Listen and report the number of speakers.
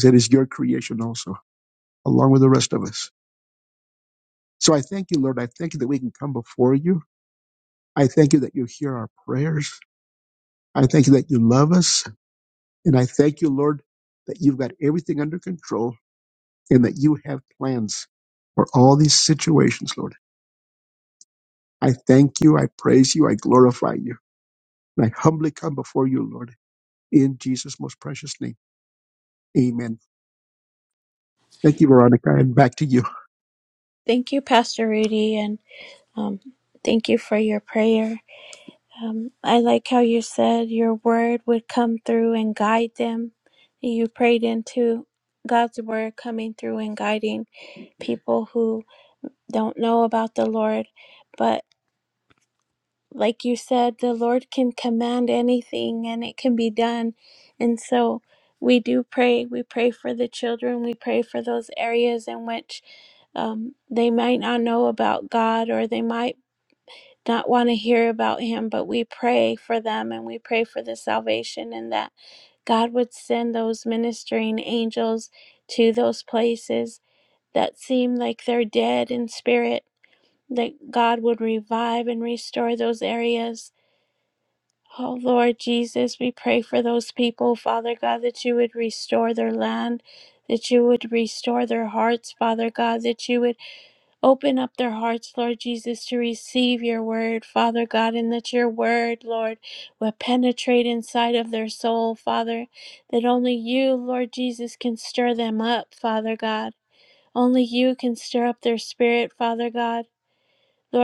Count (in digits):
2